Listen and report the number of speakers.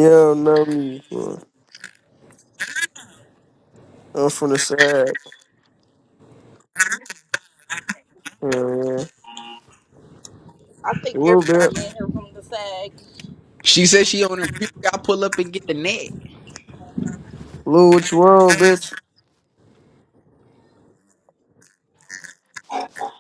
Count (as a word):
three